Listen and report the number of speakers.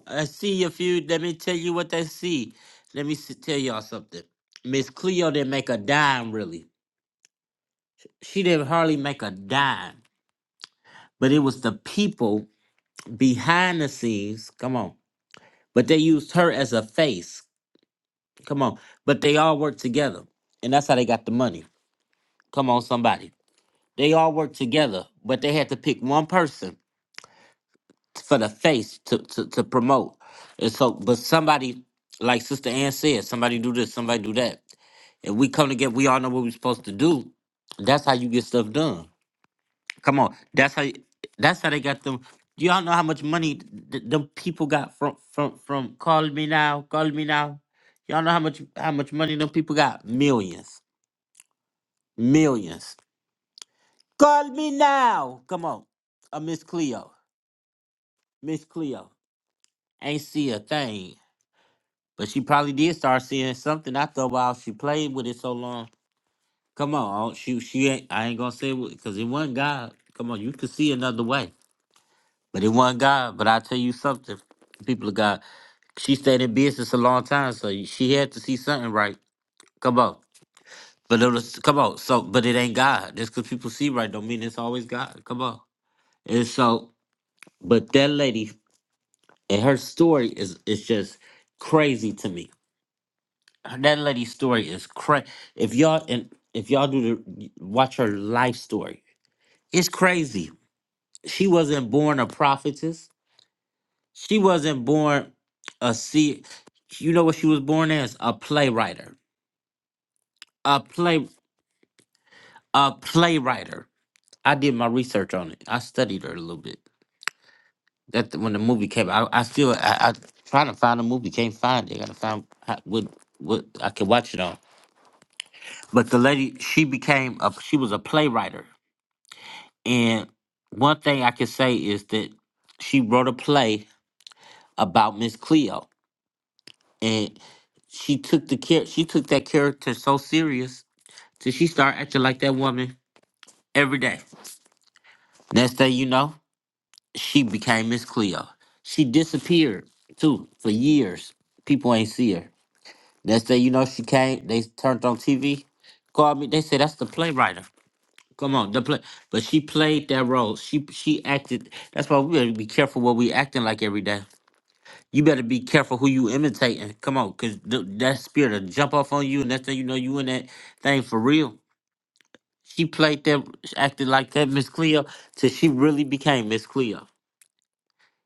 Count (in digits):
1